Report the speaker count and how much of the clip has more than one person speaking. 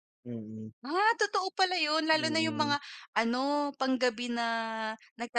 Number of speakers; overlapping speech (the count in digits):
2, about 11%